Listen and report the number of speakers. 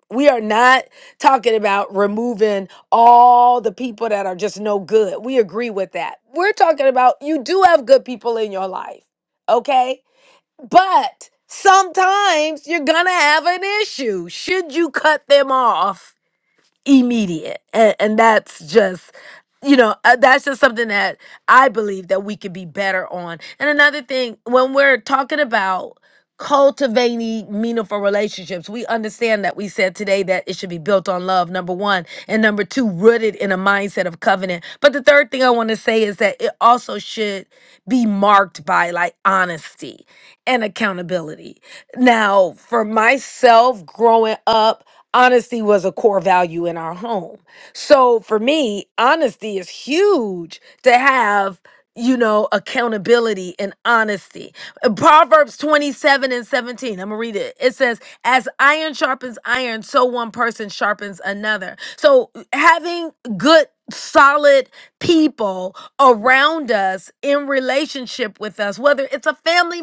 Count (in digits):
1